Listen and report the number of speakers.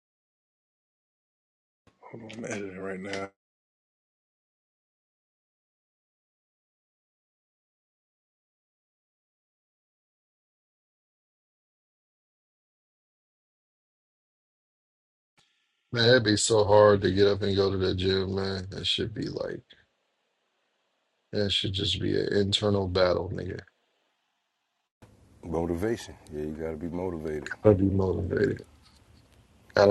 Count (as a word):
three